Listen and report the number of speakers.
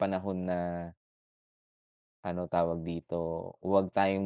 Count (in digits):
1